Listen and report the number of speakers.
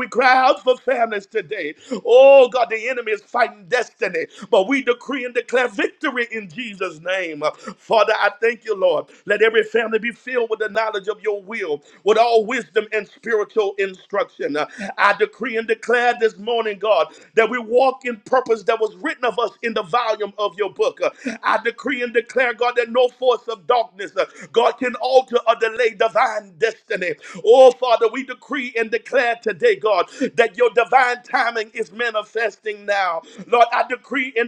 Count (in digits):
1